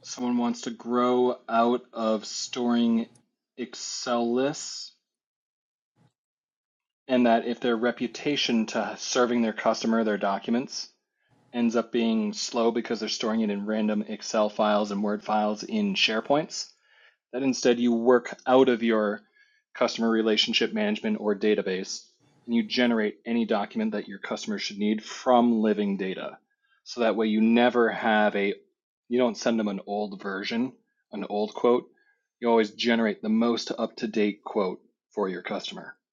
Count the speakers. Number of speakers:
one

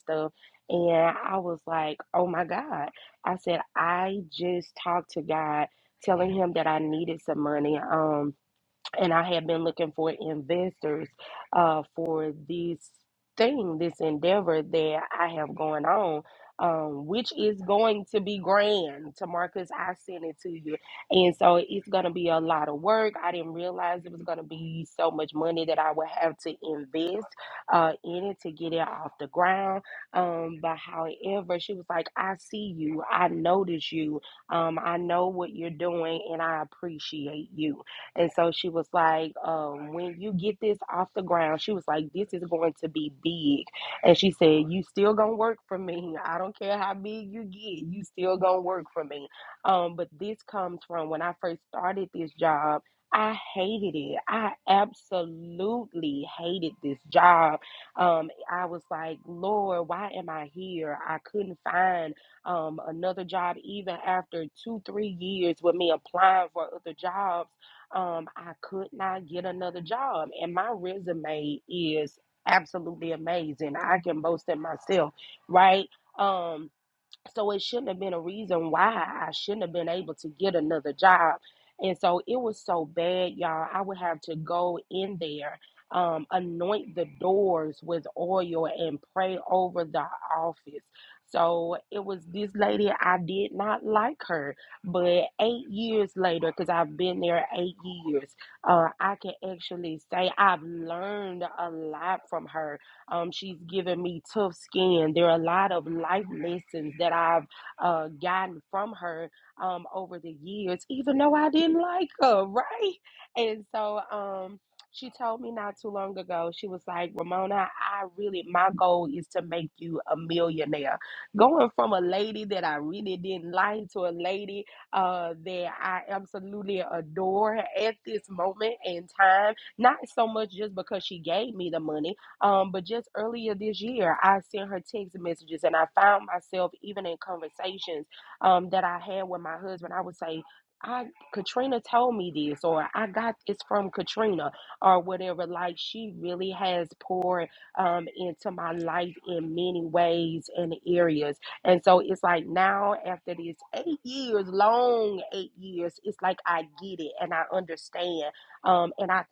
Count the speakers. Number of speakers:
one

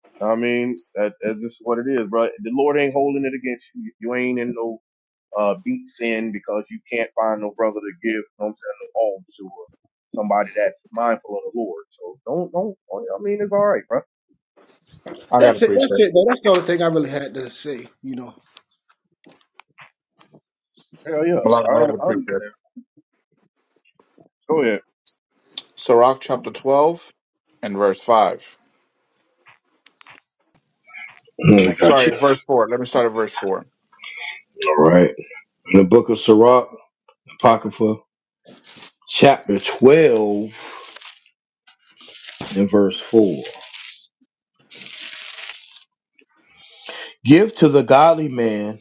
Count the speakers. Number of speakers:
four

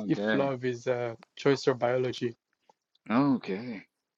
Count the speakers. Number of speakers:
two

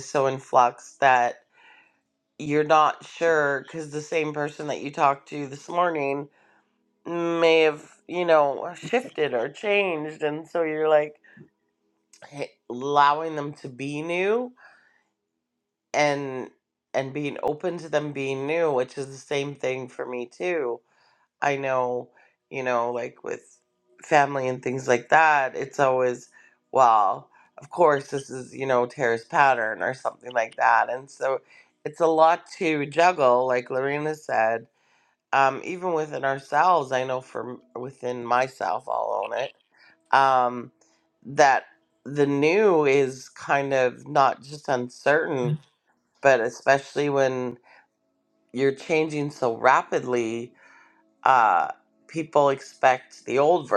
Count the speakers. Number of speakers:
one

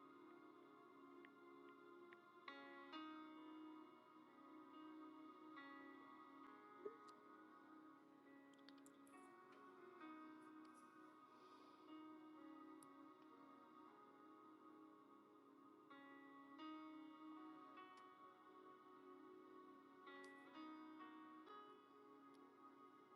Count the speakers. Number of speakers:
zero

